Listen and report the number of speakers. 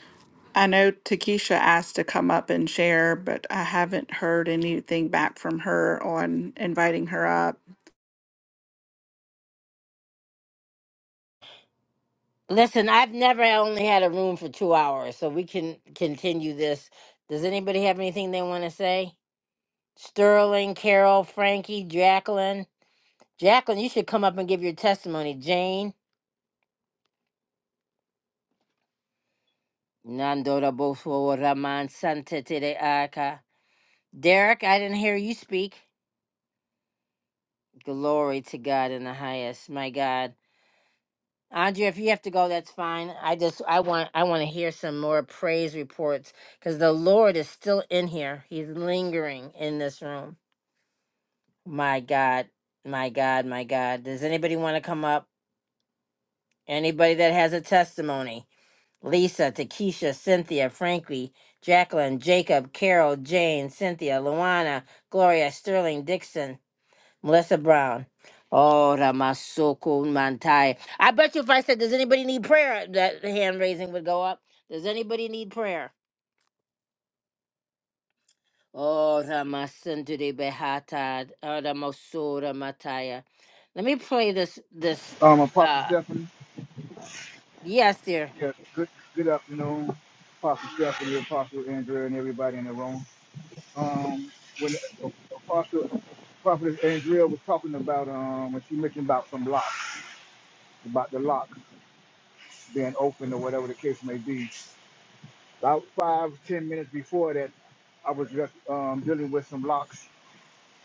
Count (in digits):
3